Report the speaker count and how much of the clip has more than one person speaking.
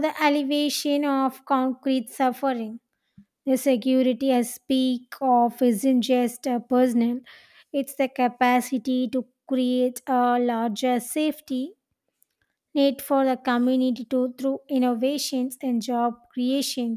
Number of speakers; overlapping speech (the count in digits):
1, no overlap